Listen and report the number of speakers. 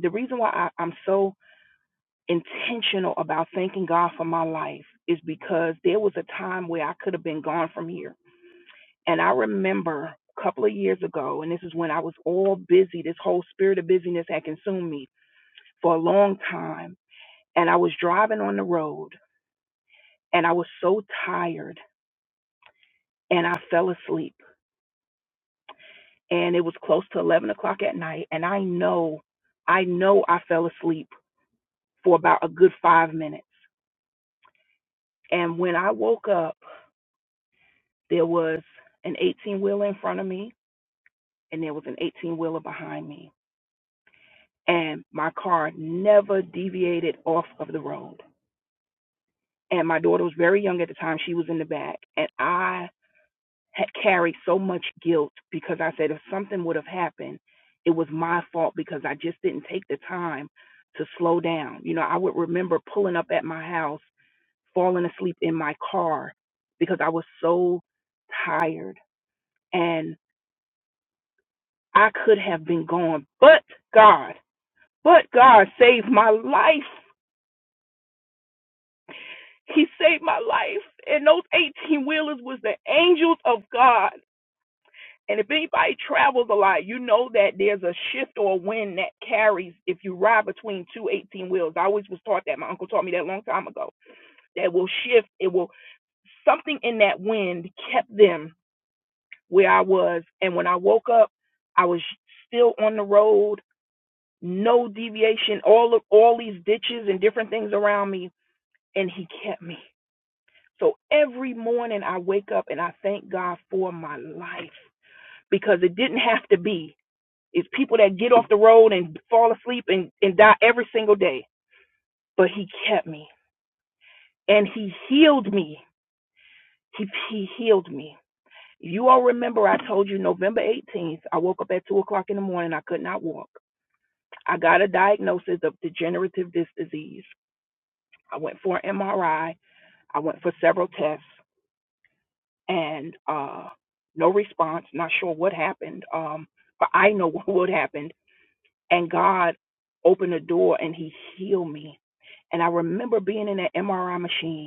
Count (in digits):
1